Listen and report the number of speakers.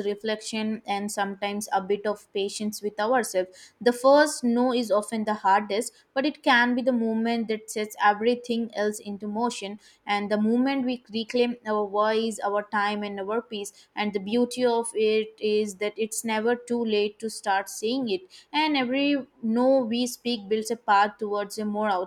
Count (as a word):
one